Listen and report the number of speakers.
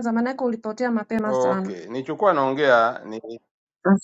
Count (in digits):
2